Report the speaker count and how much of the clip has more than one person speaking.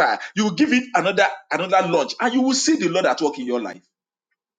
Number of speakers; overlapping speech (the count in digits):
1, no overlap